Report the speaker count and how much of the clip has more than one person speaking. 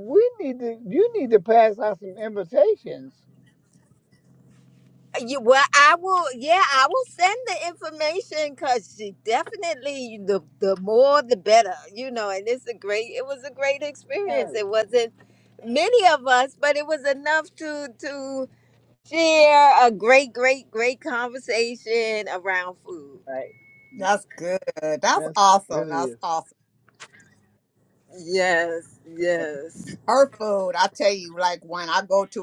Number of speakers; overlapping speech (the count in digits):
3, about 3%